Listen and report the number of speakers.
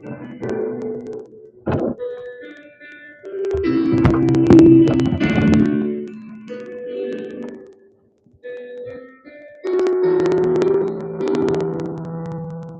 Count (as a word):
zero